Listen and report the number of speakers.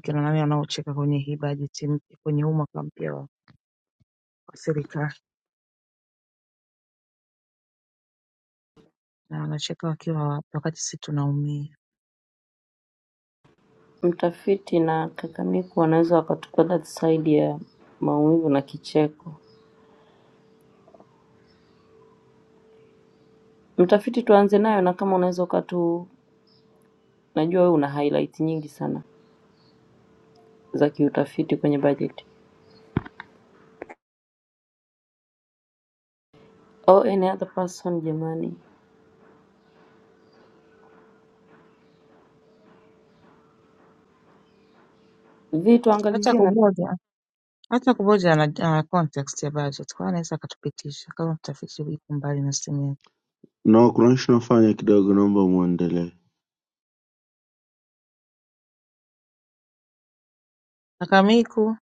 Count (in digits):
3